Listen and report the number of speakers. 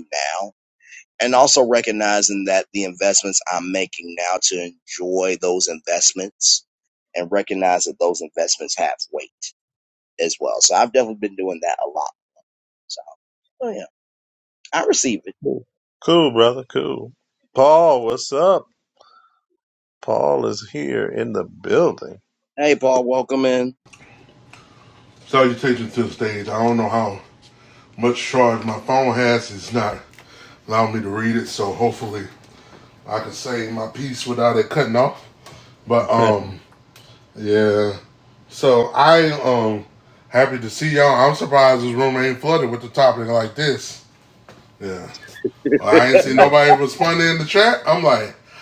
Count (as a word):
three